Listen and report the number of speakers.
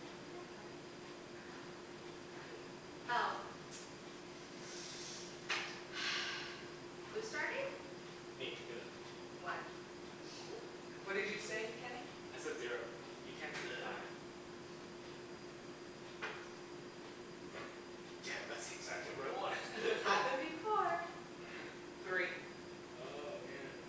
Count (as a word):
four